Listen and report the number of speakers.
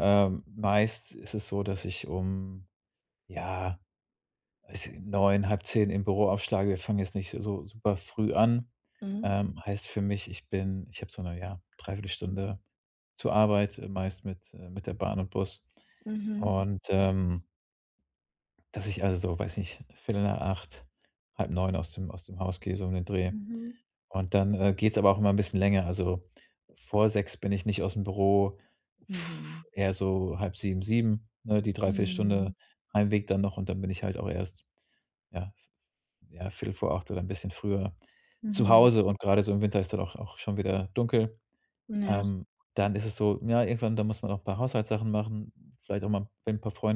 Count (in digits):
2